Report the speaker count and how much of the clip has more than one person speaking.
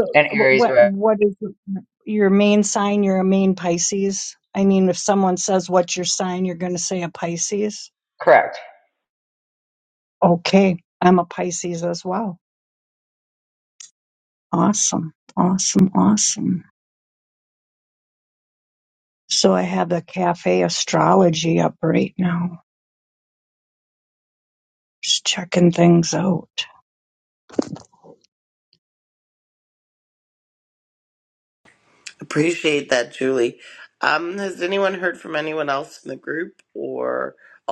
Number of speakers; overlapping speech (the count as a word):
three, about 2%